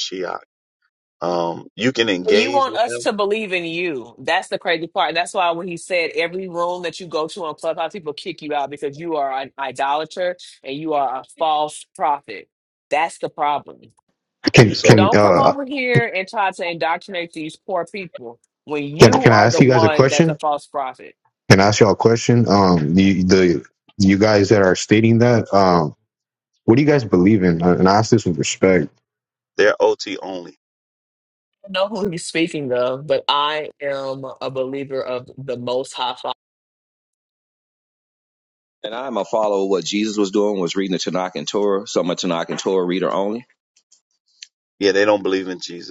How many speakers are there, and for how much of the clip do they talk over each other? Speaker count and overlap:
4, about 7%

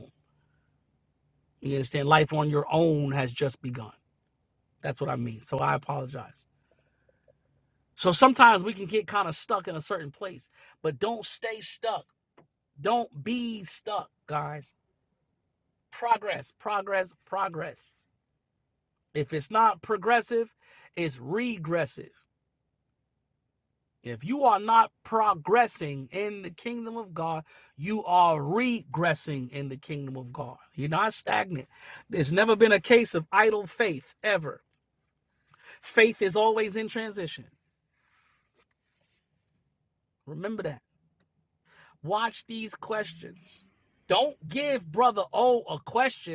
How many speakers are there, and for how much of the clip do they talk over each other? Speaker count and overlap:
1, no overlap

